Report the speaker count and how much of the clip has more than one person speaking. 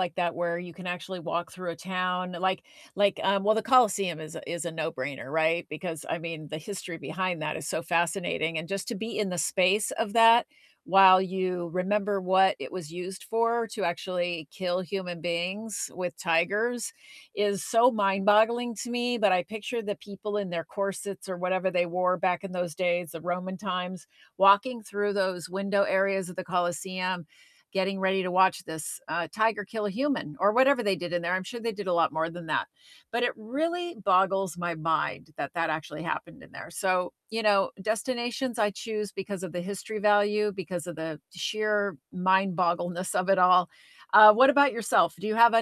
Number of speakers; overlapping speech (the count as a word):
one, no overlap